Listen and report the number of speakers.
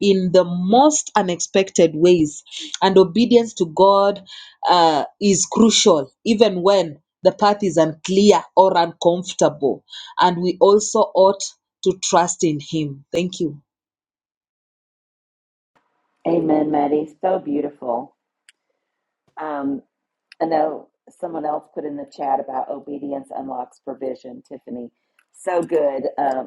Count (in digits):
2